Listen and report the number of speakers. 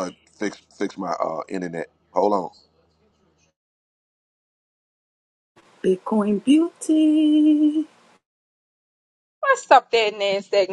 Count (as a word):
three